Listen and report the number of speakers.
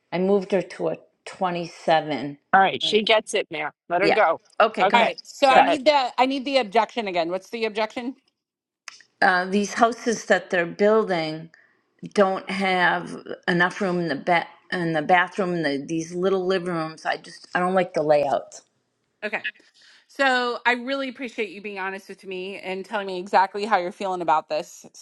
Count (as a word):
three